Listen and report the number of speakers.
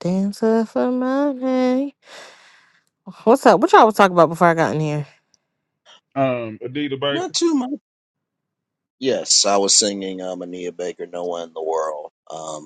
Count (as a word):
three